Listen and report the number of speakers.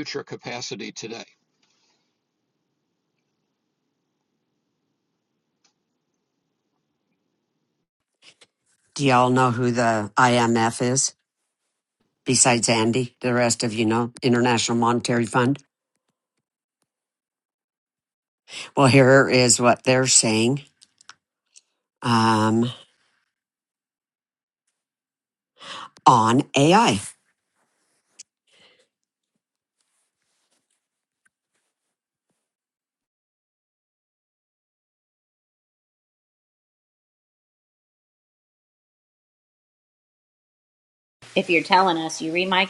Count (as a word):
three